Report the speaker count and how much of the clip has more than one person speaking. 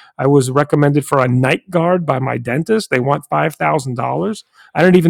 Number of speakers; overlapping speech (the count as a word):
one, no overlap